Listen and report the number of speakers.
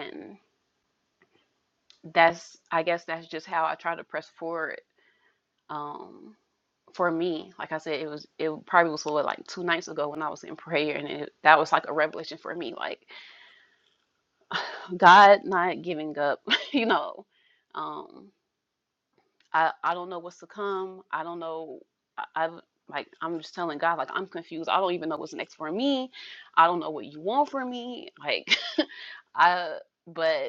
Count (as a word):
one